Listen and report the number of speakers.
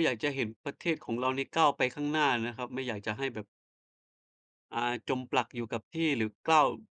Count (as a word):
one